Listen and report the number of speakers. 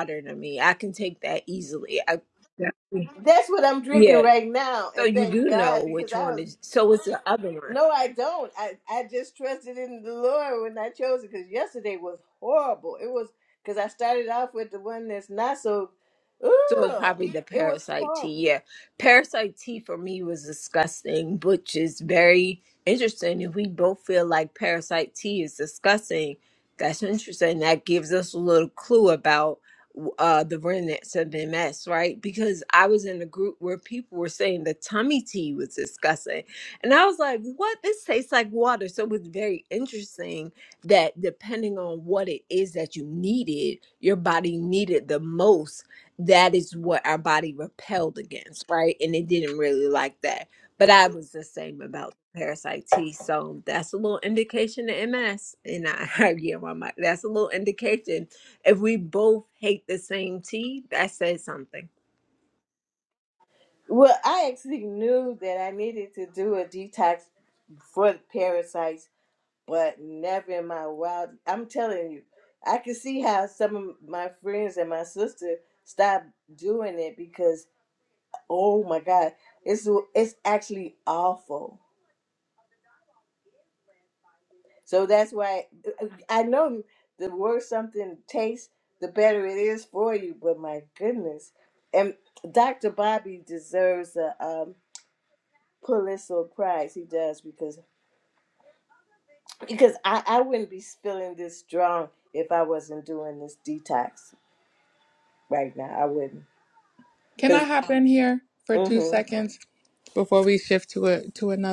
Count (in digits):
3